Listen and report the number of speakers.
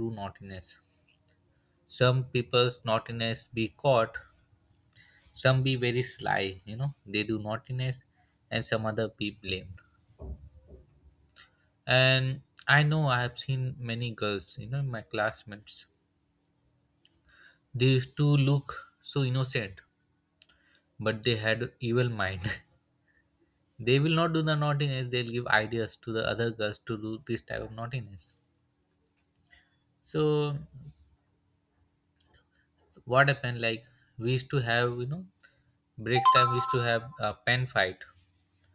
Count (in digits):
1